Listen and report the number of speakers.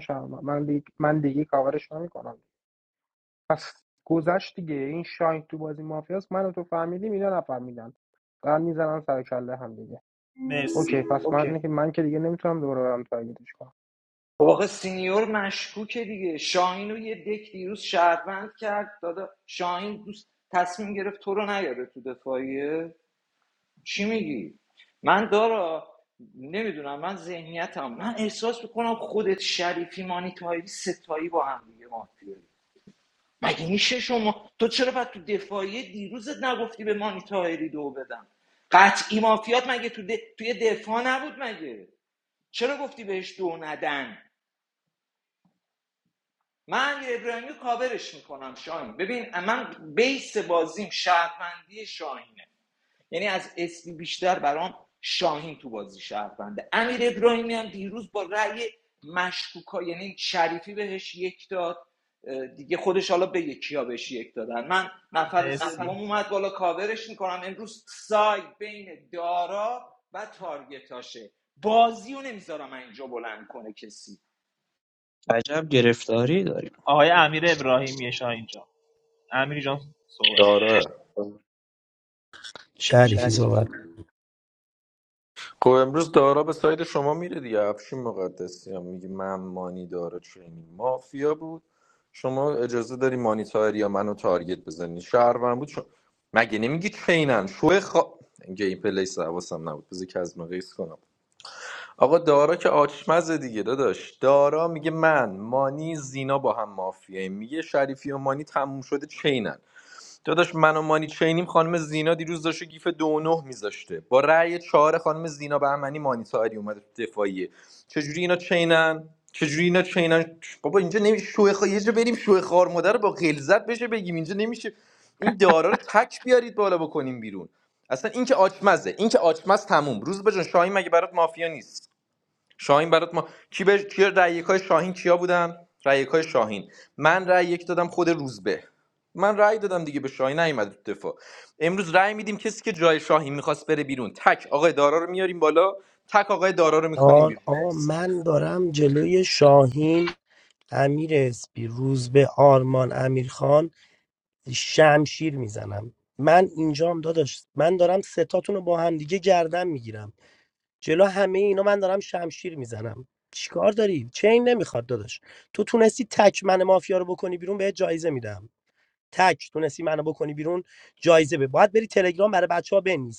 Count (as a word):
six